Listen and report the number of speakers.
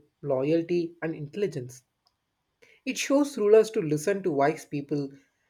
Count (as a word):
one